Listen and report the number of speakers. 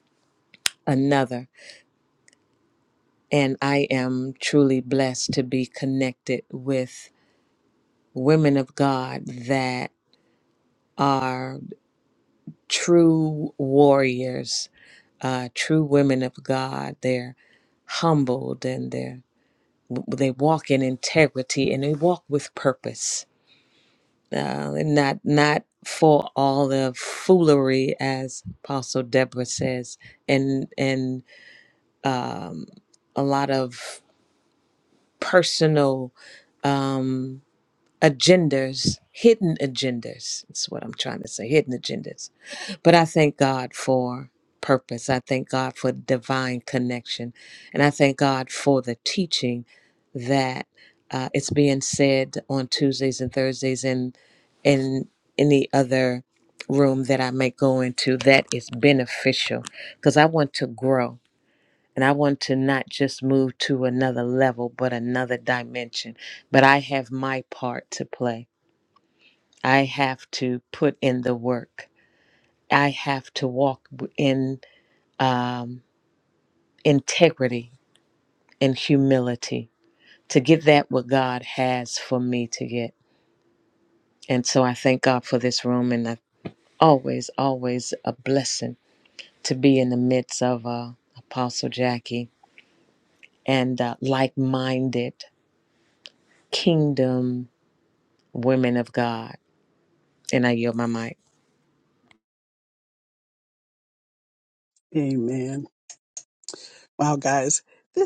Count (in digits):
2